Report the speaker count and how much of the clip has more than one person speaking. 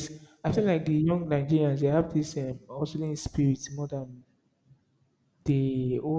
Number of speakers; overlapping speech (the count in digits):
1, no overlap